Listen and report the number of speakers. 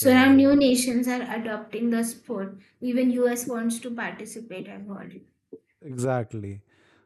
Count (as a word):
two